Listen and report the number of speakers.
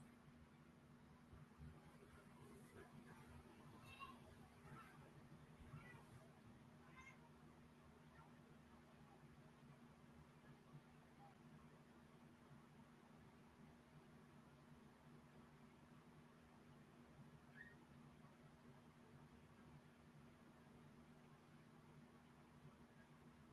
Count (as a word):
zero